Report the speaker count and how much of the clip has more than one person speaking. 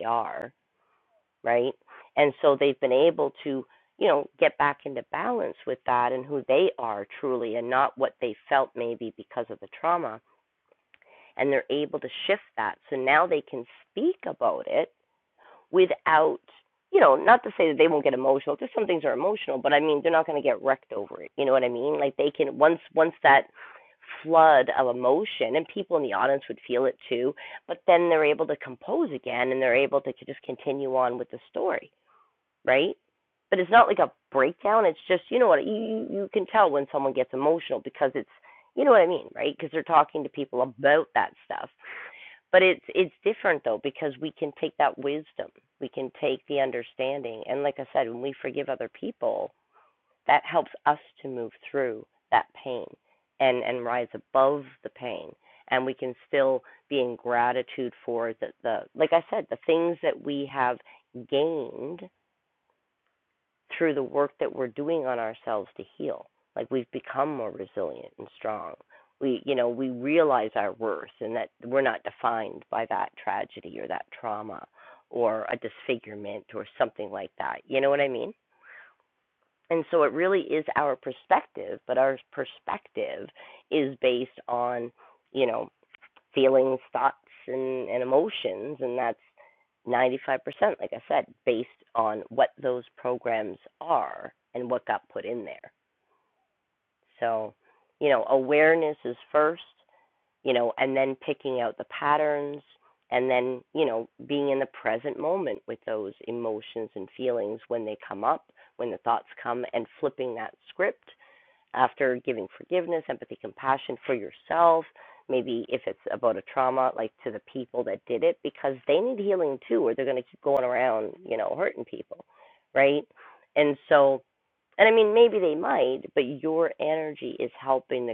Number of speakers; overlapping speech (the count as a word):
one, no overlap